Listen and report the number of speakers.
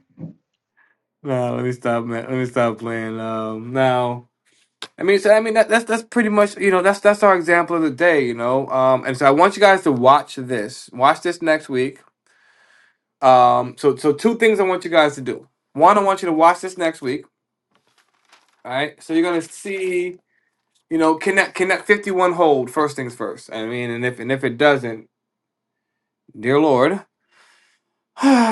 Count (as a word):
one